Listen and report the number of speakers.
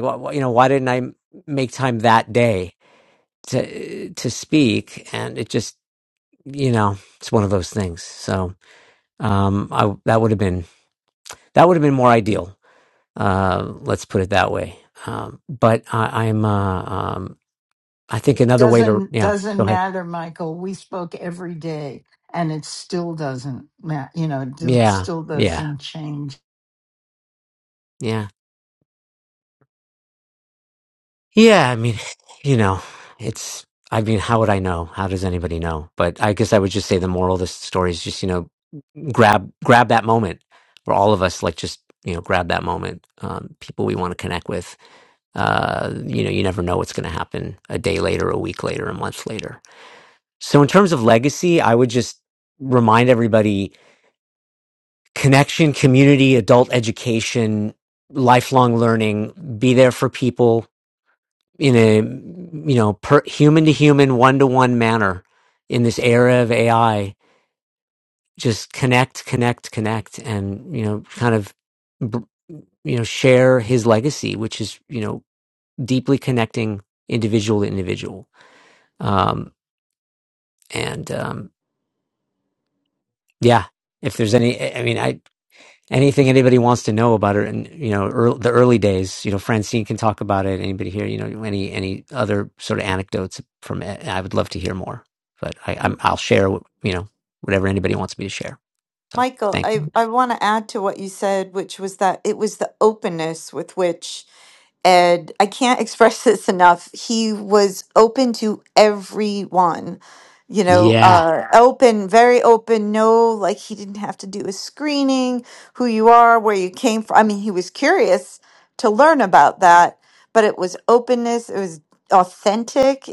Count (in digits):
3